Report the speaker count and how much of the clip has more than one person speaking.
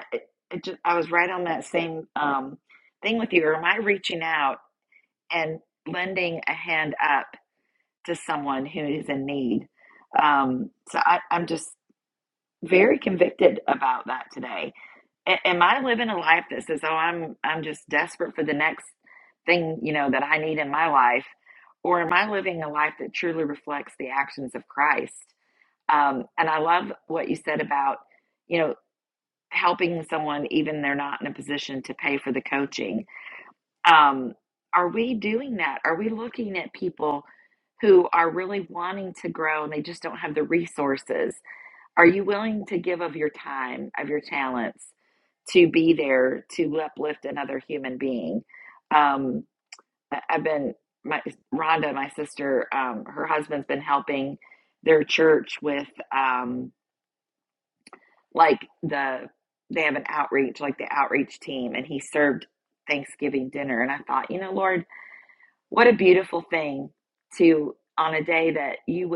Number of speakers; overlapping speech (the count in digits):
1, no overlap